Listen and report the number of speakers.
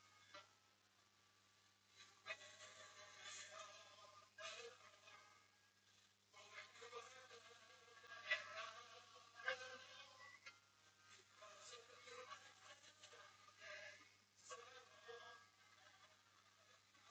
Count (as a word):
zero